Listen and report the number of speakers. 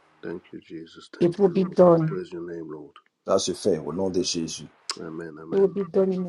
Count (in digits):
3